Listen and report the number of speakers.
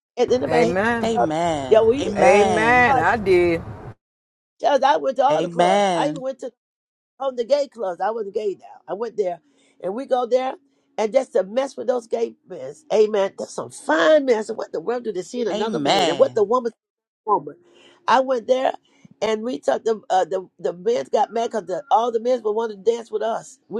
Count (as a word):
three